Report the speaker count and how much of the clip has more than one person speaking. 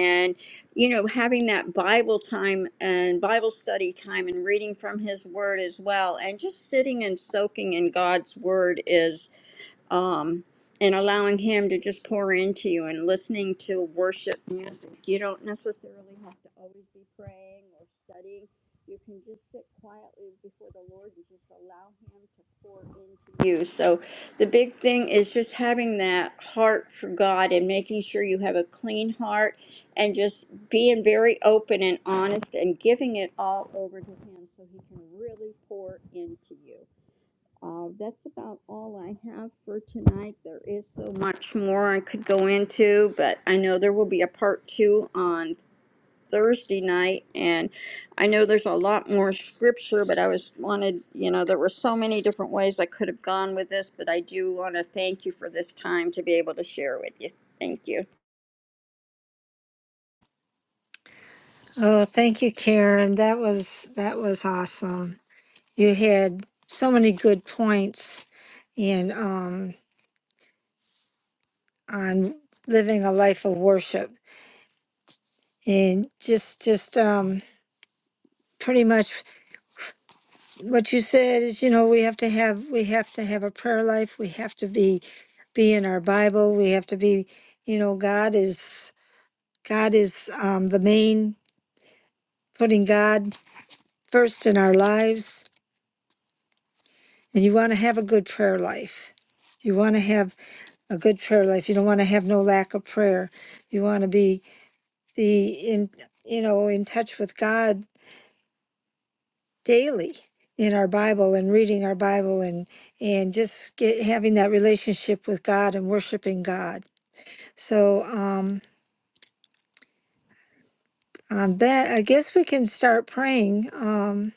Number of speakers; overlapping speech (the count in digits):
2, no overlap